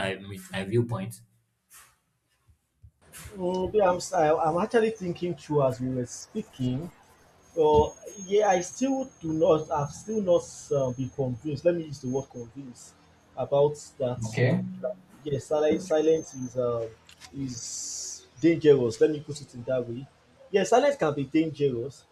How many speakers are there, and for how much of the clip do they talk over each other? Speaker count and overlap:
2, no overlap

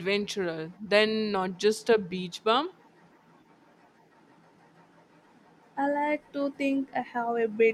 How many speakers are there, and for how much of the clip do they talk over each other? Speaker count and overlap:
2, no overlap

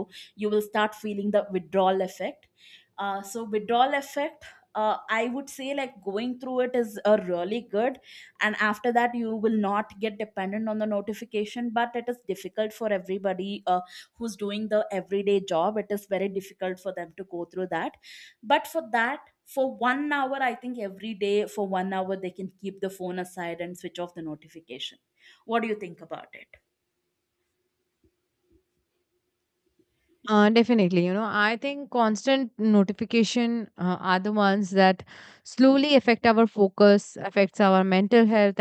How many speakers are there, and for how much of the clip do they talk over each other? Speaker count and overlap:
2, no overlap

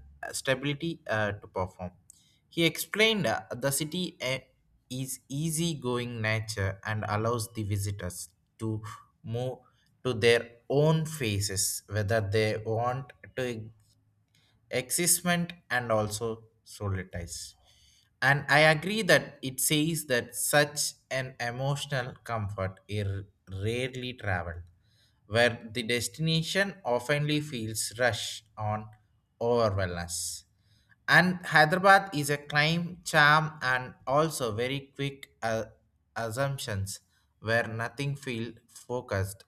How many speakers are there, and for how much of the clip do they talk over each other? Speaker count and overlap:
1, no overlap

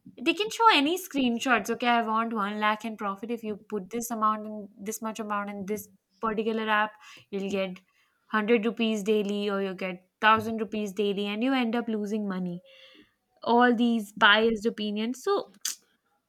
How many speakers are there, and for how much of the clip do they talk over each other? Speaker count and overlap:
1, no overlap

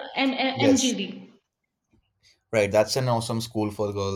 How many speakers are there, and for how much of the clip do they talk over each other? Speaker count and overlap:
2, about 8%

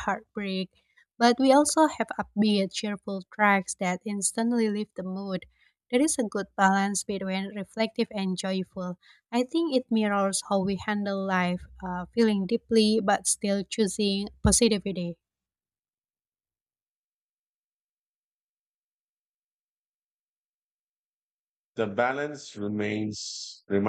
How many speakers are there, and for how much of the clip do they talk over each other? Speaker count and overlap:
2, no overlap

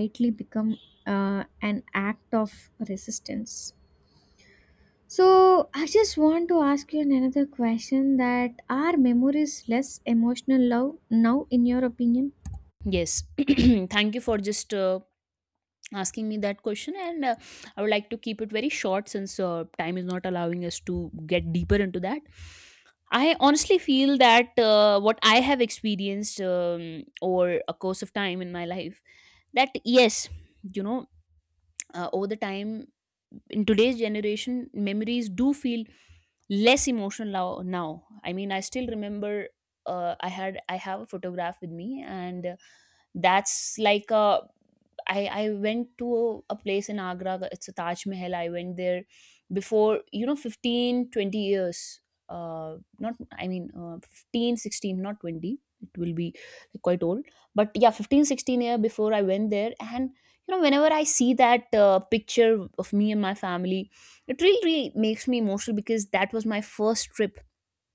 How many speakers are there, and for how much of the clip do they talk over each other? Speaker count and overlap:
2, no overlap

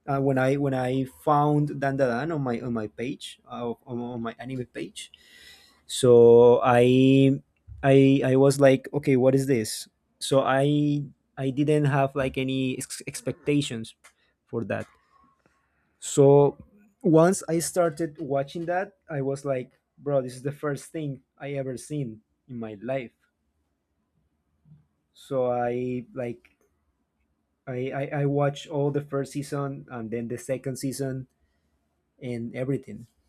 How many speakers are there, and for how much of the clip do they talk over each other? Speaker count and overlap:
1, no overlap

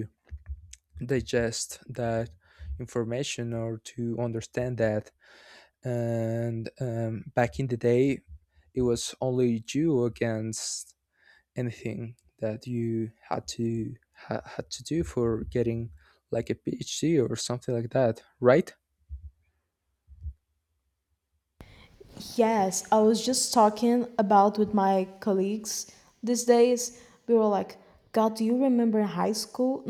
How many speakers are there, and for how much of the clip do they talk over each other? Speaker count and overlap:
2, no overlap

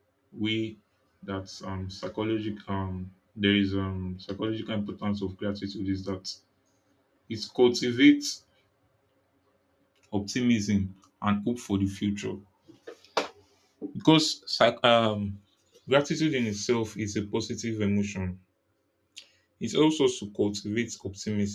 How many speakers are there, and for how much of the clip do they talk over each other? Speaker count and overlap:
1, no overlap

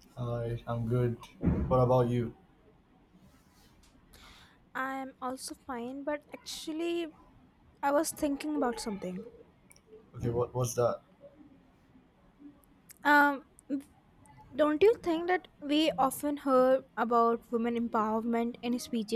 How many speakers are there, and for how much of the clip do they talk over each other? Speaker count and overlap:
2, no overlap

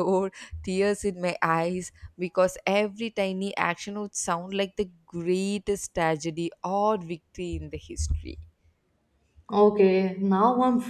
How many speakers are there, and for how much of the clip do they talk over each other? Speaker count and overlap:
2, no overlap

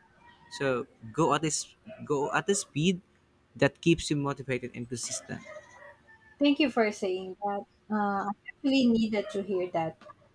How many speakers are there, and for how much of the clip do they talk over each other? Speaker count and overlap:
2, no overlap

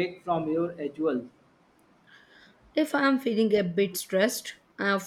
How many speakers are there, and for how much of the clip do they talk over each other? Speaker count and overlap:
2, no overlap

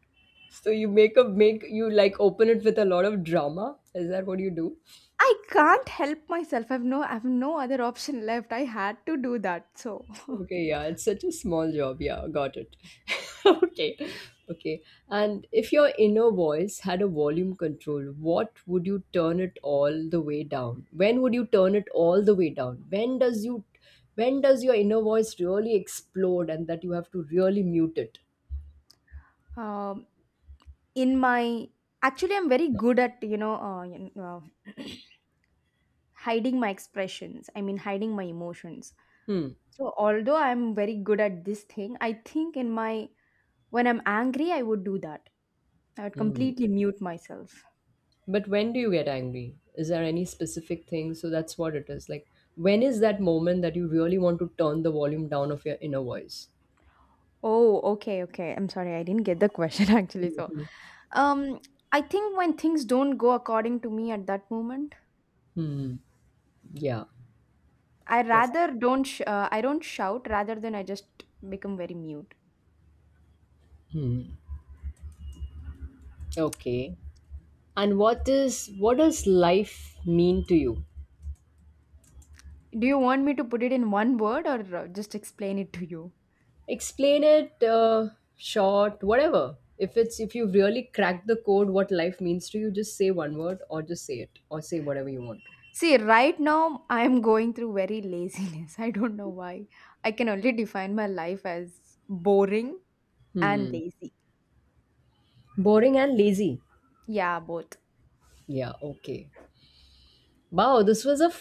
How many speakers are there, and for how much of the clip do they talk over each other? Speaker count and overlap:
2, about 1%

